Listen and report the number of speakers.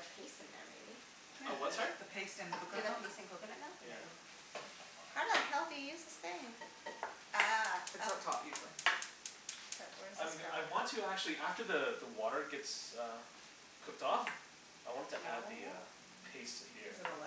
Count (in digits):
3